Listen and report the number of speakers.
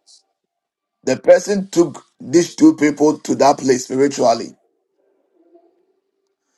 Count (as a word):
one